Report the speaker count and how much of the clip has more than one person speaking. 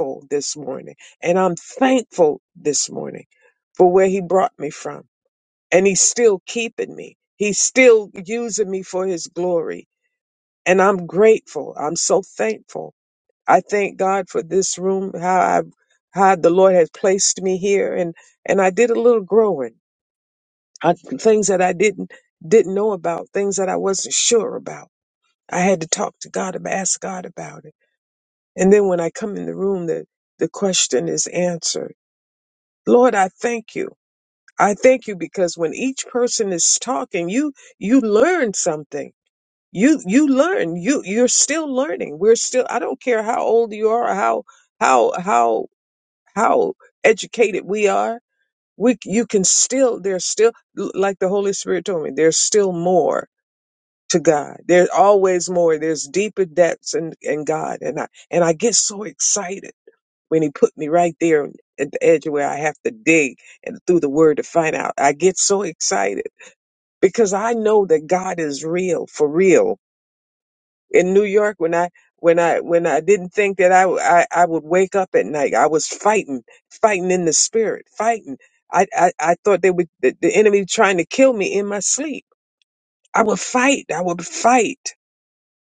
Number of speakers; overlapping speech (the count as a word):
one, no overlap